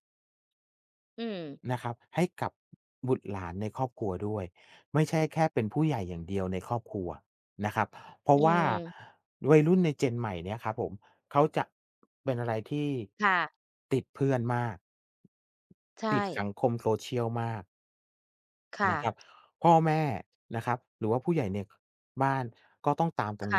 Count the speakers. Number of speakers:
2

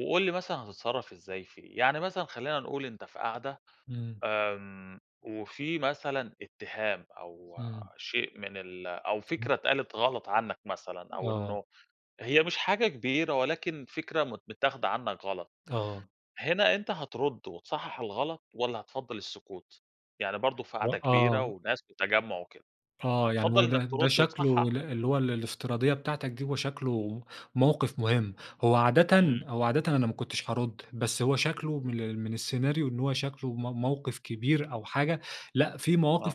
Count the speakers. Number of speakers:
2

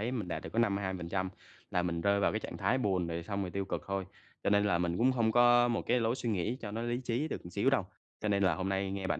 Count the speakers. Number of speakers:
1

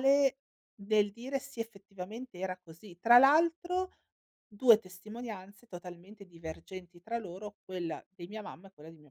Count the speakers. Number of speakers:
1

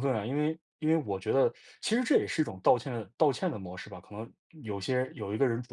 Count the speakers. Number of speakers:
1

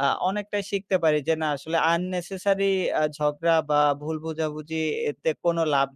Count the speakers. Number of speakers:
1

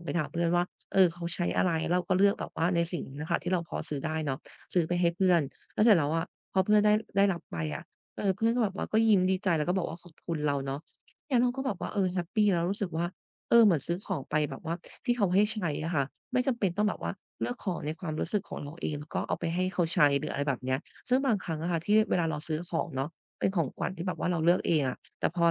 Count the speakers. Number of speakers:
1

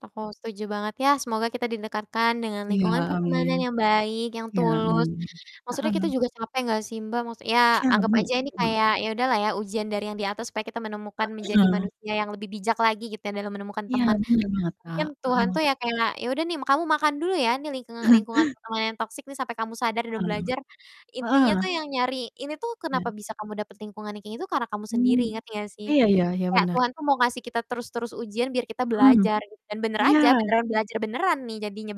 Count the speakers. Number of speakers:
2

